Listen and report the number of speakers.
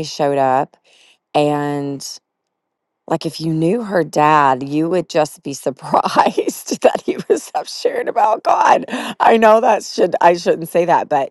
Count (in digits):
1